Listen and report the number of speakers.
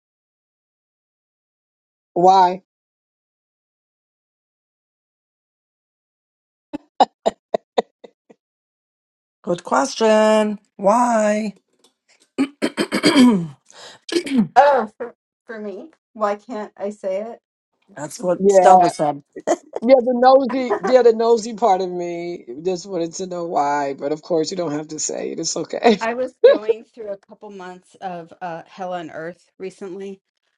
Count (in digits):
3